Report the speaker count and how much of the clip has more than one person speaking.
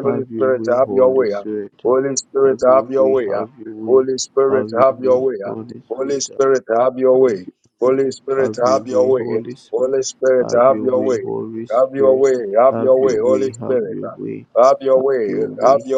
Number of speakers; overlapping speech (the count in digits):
2, about 59%